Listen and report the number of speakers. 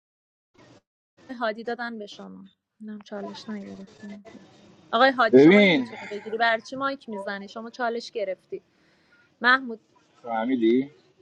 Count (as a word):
two